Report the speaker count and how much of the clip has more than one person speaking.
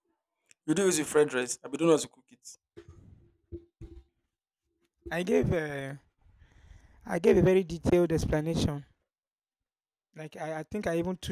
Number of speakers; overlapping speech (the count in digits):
2, no overlap